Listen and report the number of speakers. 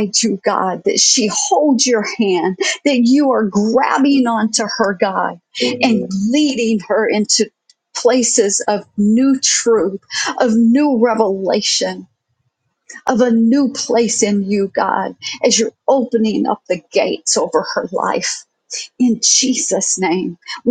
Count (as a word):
one